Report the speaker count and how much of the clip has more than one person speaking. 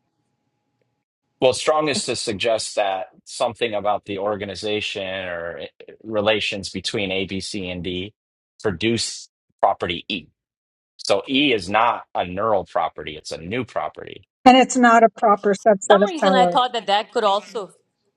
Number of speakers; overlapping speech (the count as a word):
three, about 4%